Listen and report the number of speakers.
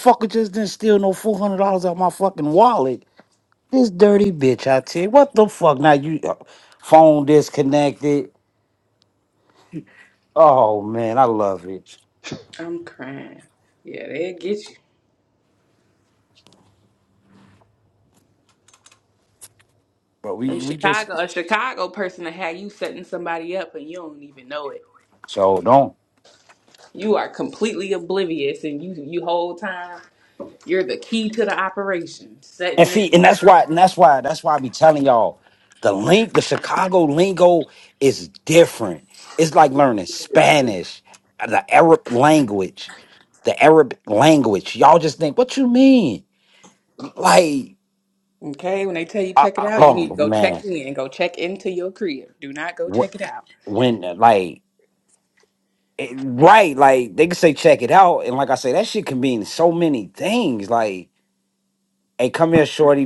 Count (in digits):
2